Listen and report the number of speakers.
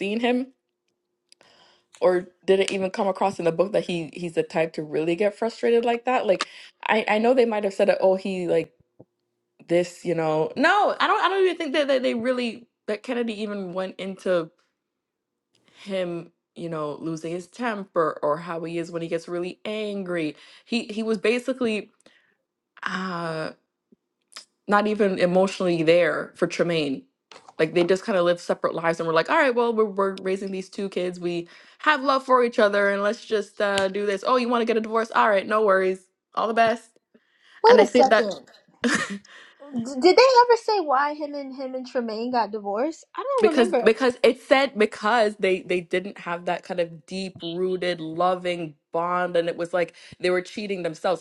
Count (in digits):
2